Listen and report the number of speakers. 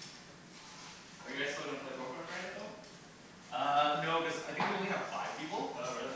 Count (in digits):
2